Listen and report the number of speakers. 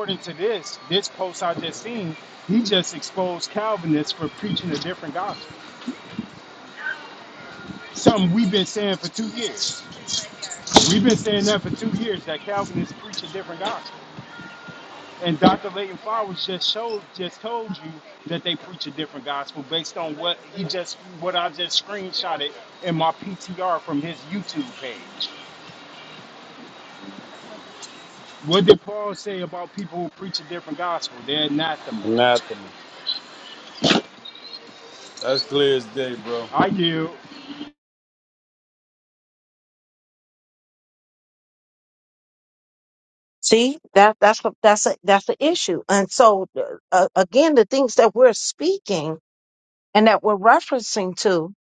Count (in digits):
3